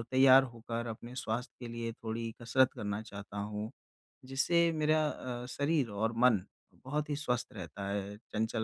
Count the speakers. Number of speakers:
1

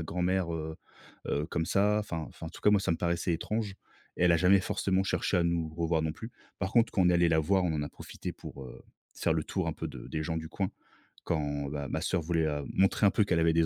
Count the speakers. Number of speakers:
1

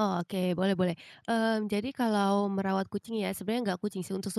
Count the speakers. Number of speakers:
1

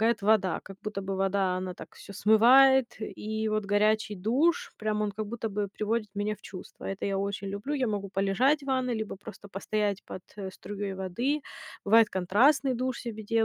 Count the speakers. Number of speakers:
1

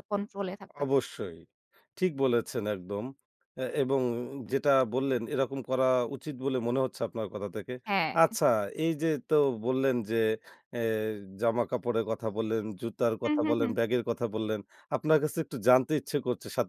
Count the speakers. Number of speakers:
2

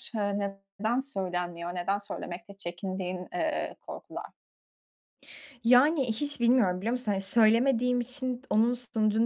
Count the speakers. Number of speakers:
2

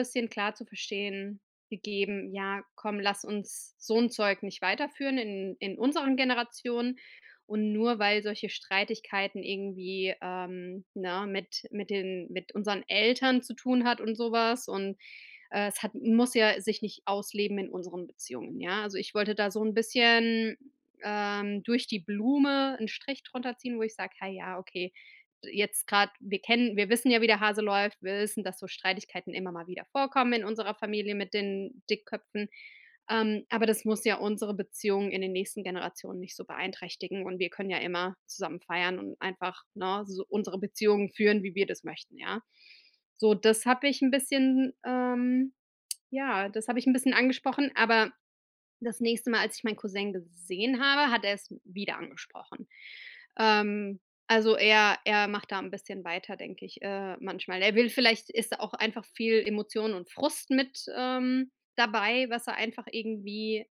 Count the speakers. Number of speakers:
1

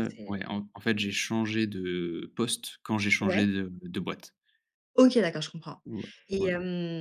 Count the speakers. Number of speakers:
2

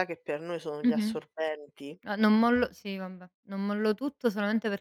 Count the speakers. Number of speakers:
2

